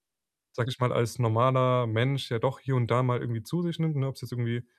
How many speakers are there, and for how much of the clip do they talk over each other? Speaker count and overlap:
one, no overlap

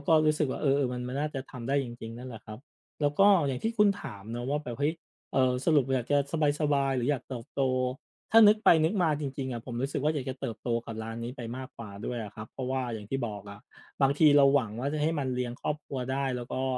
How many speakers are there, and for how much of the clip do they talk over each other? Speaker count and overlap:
one, no overlap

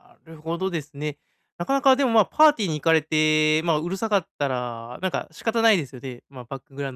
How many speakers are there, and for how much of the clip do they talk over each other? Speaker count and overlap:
one, no overlap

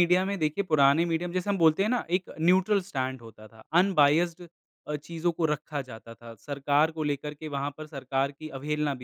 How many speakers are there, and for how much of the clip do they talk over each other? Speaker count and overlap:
one, no overlap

